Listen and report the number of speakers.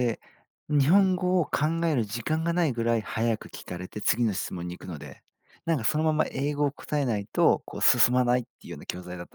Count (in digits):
1